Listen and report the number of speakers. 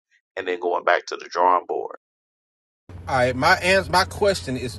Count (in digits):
2